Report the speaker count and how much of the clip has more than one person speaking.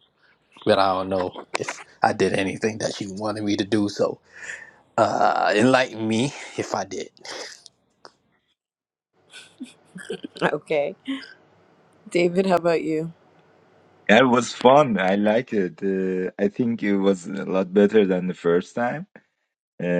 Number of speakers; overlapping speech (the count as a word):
three, no overlap